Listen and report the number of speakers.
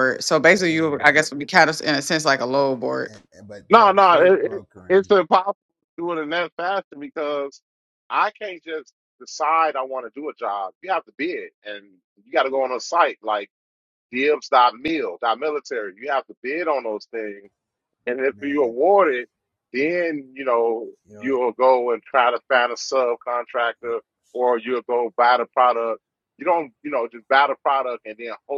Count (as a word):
three